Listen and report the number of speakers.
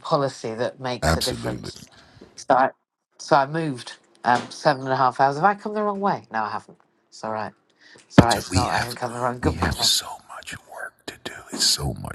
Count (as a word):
two